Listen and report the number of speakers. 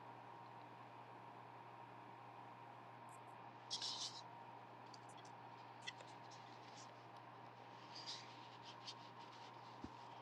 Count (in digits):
0